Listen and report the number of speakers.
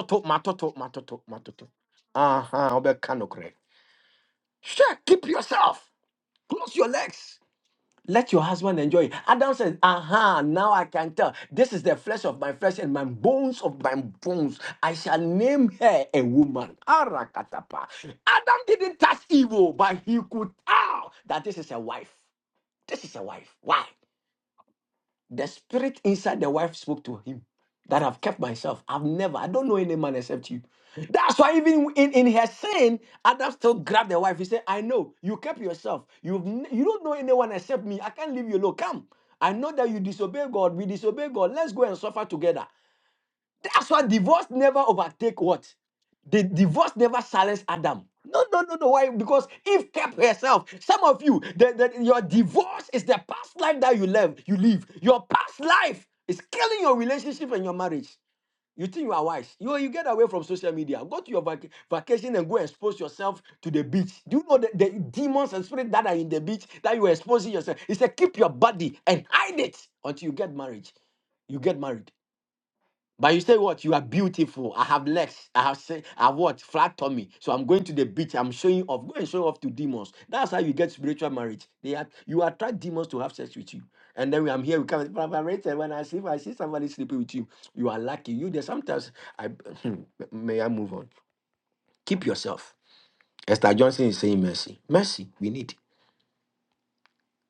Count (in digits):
1